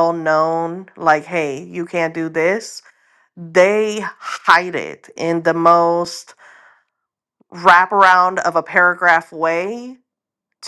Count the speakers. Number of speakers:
1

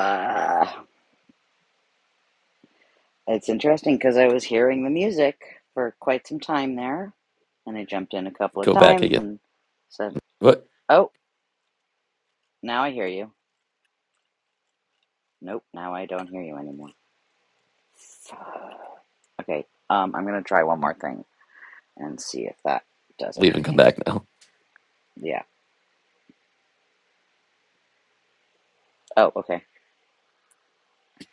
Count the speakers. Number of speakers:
2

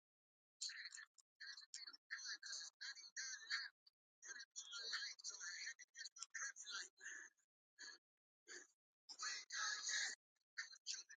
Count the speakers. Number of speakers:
0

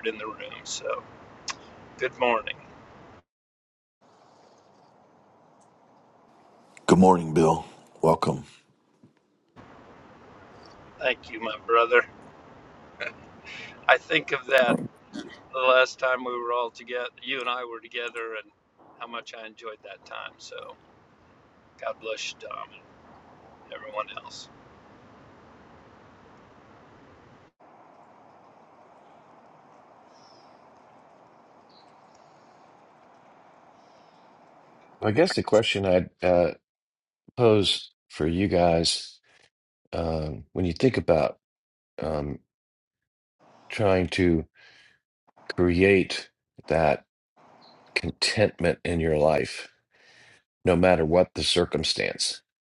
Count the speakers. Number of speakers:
3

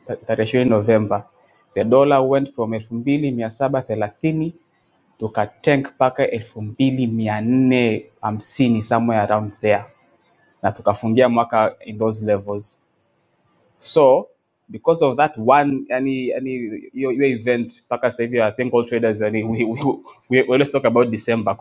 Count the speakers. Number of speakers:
1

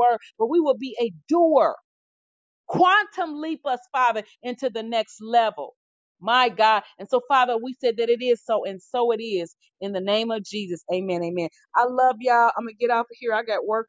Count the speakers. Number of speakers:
1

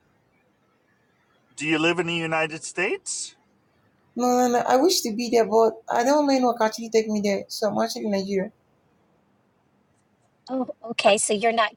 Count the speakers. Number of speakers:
3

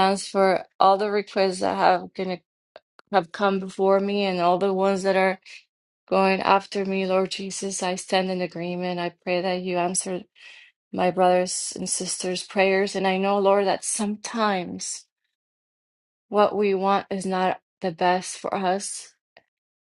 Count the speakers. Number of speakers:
1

